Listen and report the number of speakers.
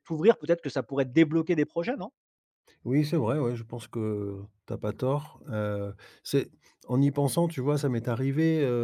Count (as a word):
two